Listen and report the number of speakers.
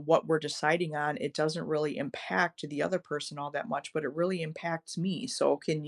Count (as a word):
one